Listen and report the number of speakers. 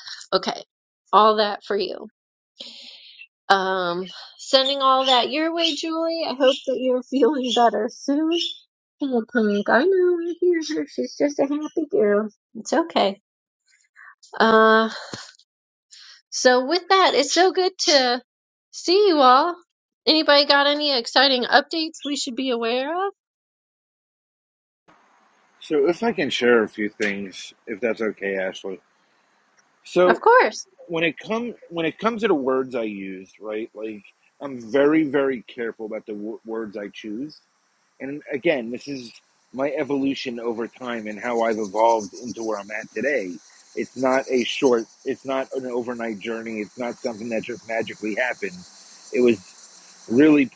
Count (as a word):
two